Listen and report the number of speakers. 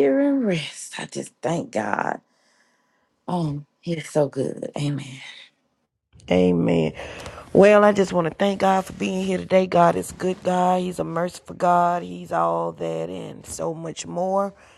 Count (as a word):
two